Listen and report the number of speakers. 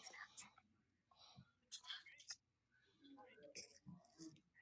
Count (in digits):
0